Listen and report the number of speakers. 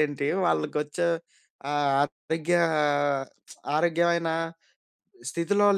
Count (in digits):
1